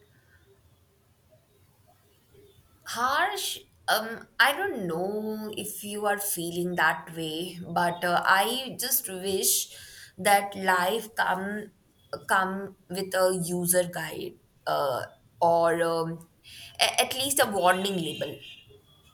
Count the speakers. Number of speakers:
1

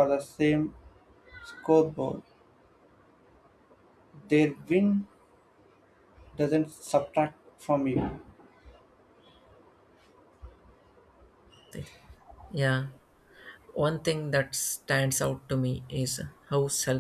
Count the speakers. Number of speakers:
2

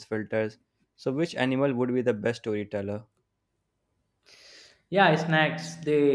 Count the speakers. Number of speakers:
2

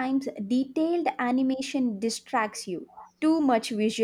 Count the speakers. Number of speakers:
1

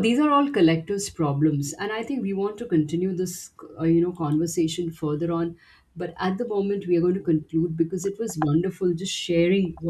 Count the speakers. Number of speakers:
1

